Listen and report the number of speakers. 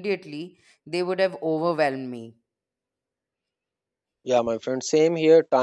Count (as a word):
two